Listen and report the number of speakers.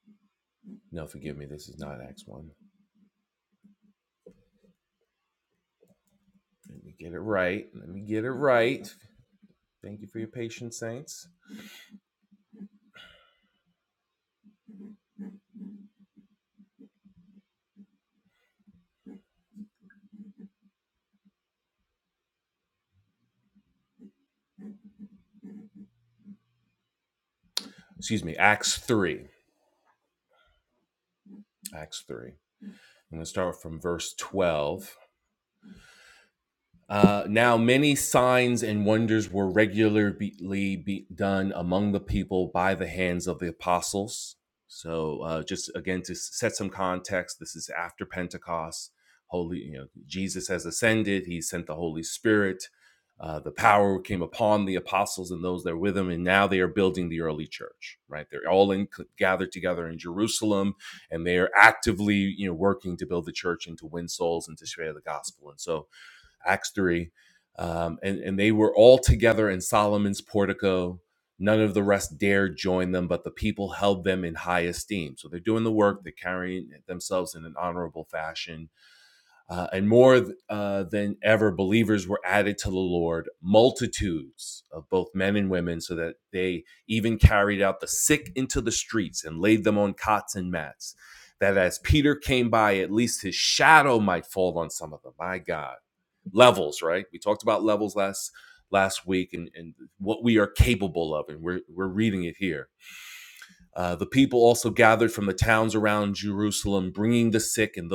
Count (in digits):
1